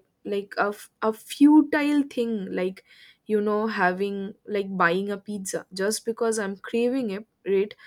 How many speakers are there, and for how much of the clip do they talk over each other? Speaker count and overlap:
1, no overlap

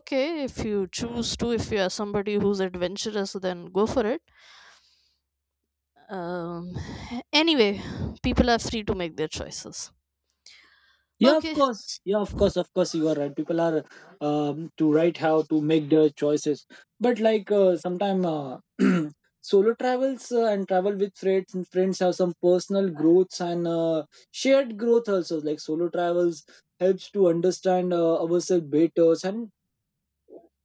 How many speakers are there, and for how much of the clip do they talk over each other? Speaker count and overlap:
2, about 1%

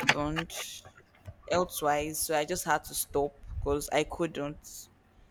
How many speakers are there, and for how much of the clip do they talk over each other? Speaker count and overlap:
1, no overlap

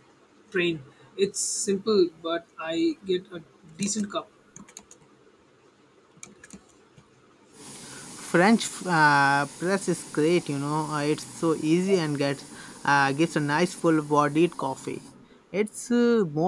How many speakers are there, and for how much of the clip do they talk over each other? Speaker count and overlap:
2, no overlap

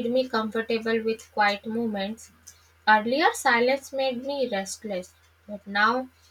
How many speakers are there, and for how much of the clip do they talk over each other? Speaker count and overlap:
1, no overlap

